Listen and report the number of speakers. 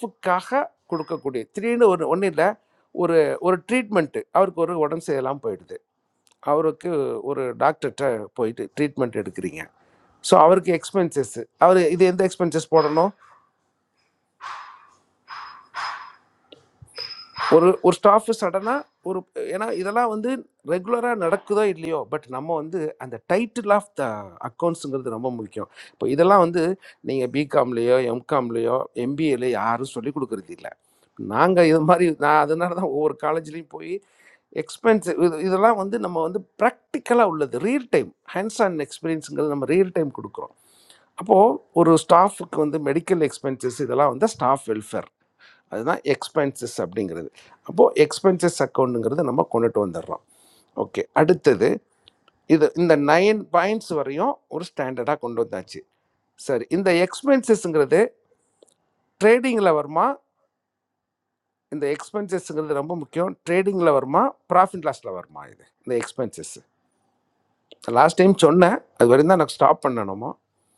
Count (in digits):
1